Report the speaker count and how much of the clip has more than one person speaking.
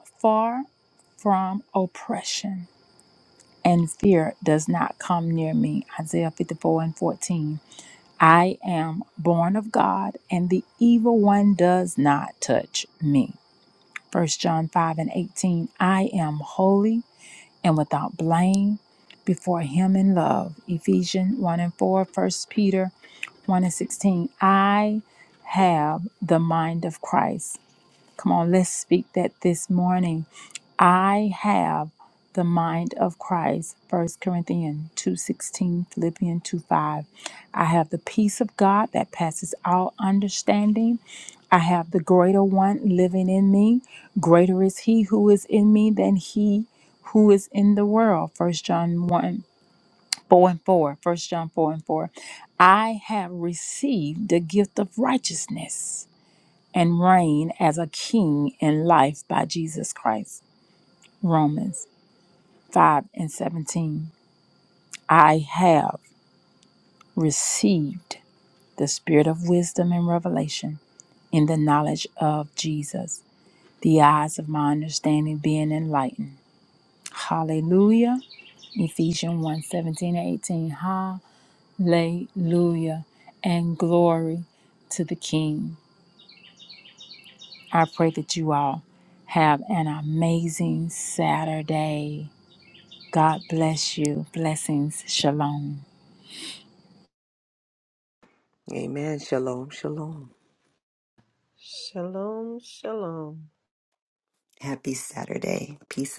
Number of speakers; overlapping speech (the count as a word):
four, no overlap